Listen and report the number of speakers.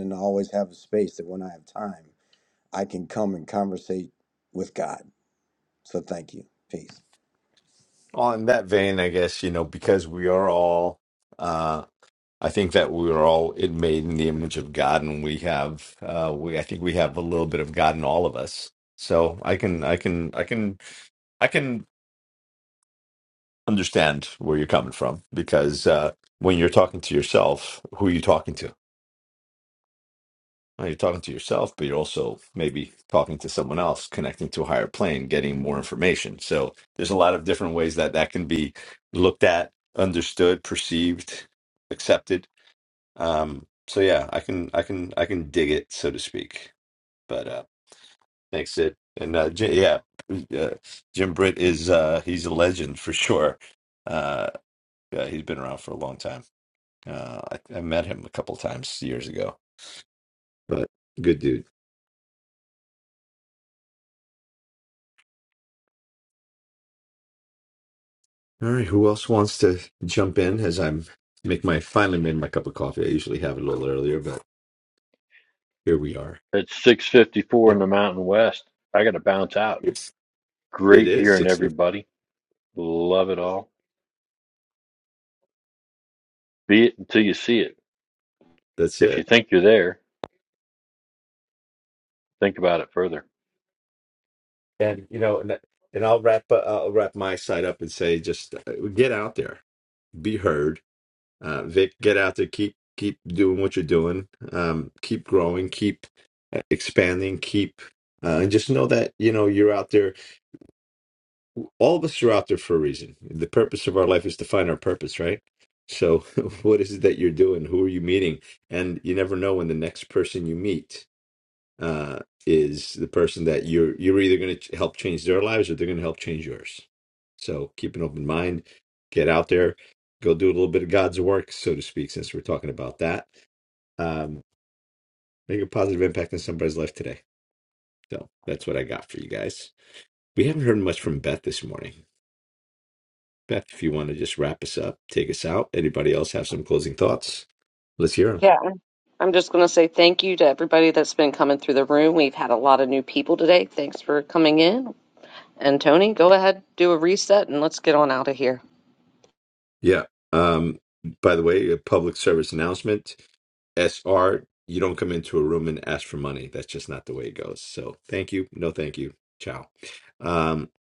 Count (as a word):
four